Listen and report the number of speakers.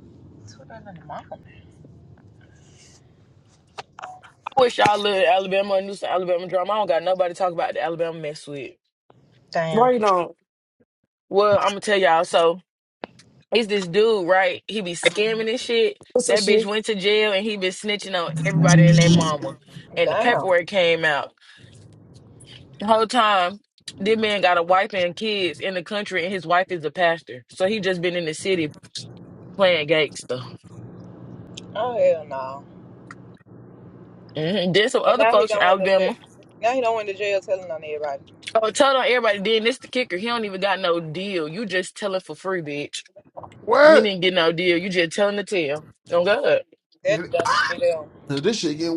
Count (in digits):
4